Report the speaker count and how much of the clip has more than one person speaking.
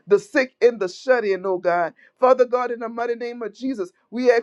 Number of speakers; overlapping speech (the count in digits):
1, no overlap